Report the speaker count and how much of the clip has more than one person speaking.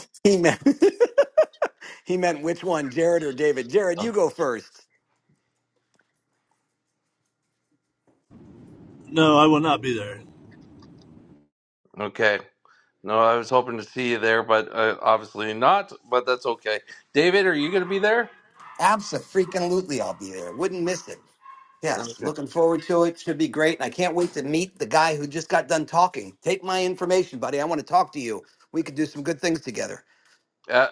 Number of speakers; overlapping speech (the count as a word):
three, about 1%